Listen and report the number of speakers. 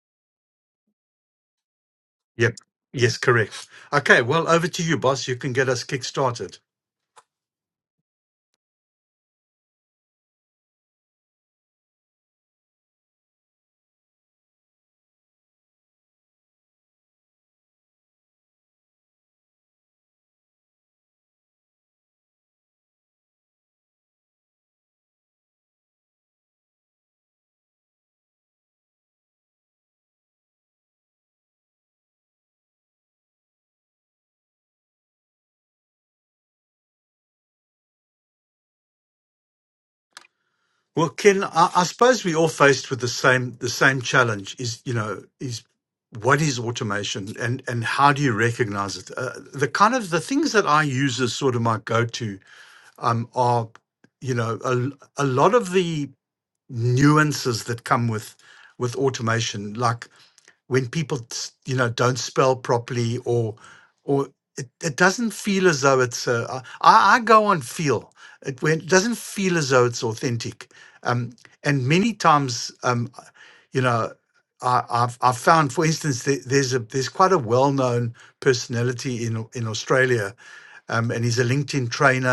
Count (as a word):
one